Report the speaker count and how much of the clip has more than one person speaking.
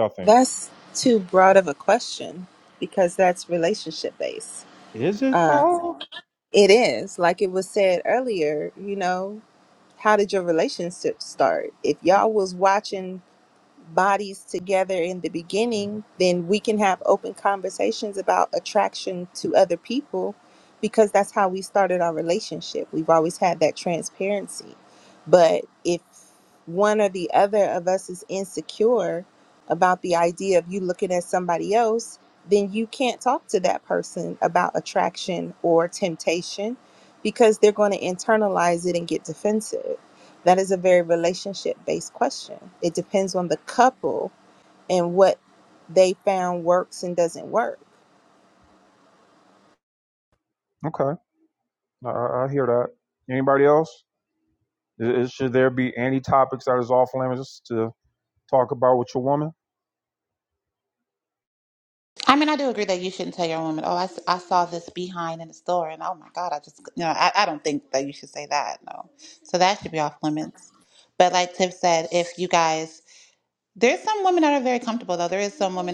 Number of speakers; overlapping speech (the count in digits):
3, about 1%